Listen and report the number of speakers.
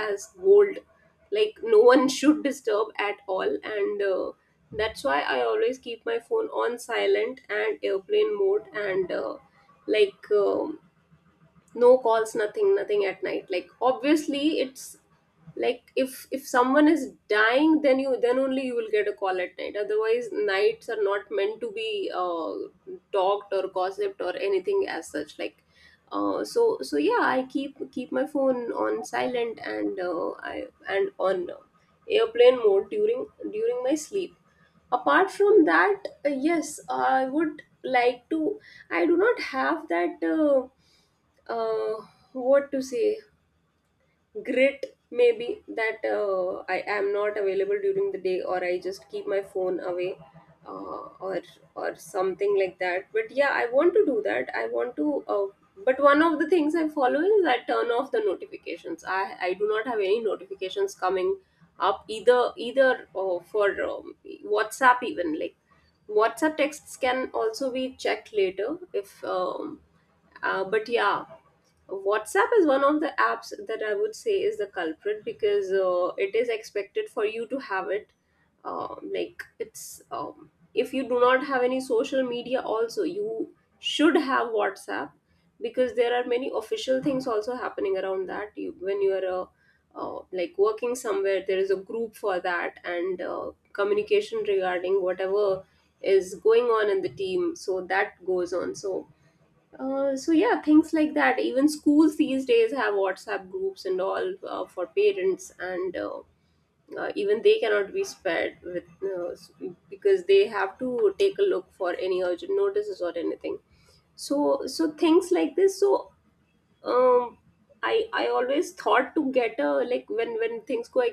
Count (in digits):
1